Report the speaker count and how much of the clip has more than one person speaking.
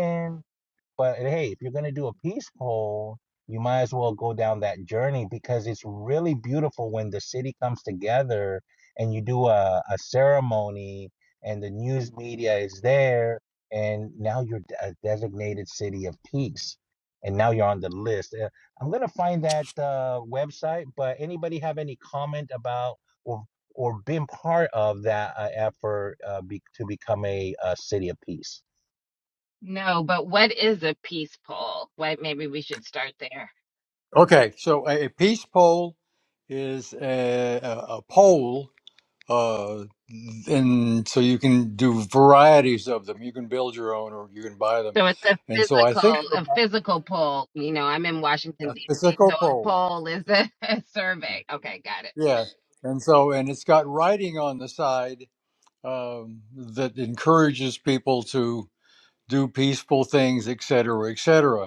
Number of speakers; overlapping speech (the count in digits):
3, about 3%